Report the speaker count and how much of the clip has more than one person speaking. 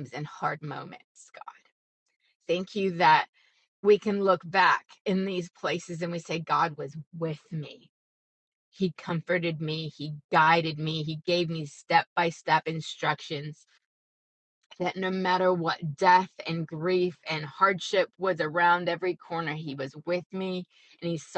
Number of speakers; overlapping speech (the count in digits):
1, no overlap